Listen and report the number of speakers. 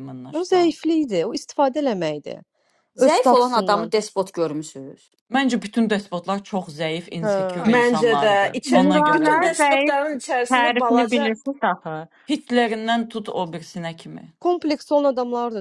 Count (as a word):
five